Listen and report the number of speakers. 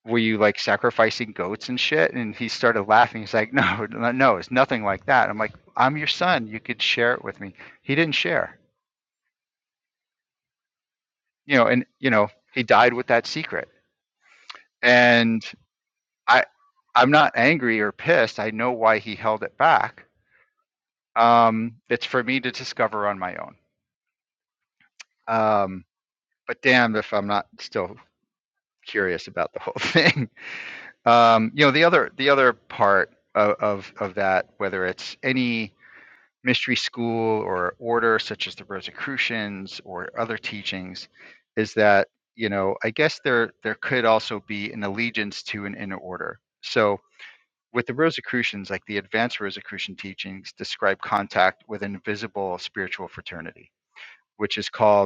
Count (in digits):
1